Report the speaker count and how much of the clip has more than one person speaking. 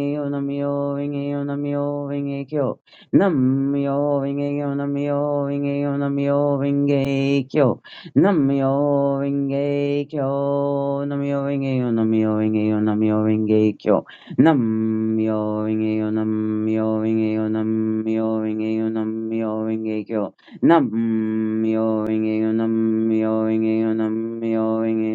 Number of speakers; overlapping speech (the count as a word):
one, no overlap